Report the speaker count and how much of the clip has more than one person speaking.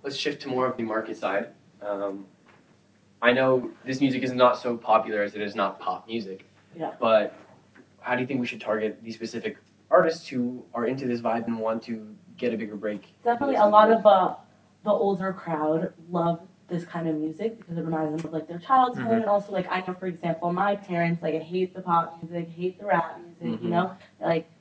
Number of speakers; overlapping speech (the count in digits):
2, about 6%